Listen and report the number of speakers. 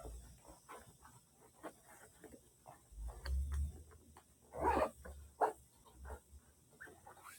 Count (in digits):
0